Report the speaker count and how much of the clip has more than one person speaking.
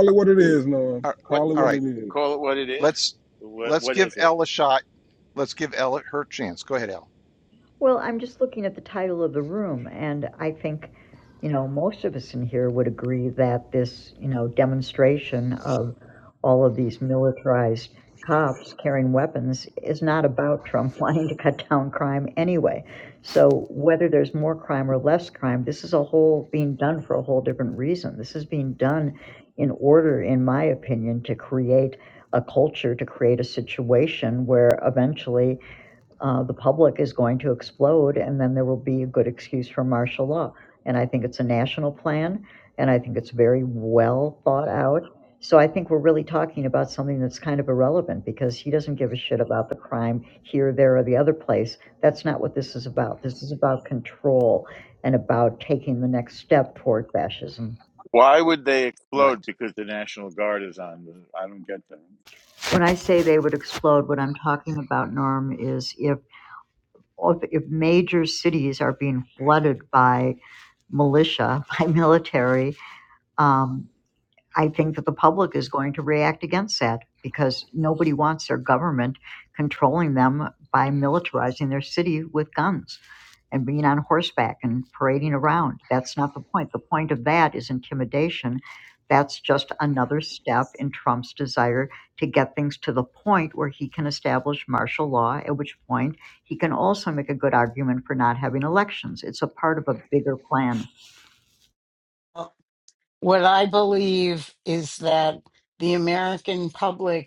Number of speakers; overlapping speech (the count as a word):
five, about 1%